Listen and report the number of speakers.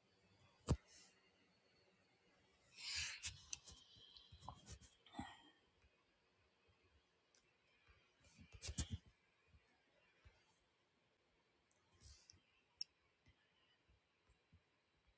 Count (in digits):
0